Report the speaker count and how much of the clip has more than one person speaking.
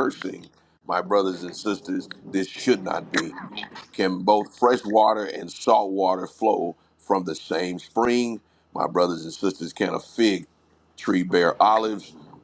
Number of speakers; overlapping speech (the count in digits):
1, no overlap